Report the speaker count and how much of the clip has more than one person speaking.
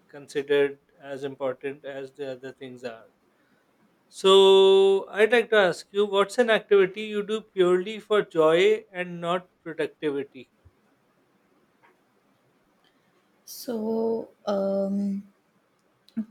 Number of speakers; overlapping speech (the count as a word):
two, no overlap